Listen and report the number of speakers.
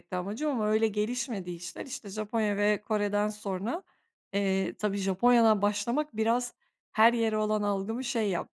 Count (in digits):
1